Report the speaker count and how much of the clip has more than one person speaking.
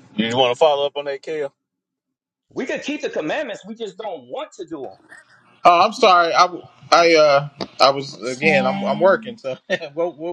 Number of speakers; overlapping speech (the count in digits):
3, no overlap